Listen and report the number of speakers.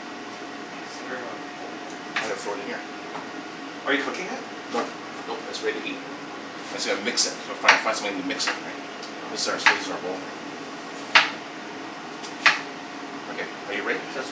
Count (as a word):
two